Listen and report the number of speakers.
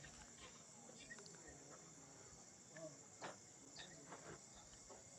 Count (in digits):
0